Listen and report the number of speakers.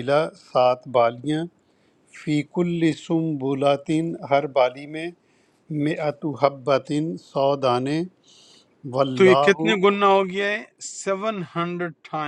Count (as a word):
two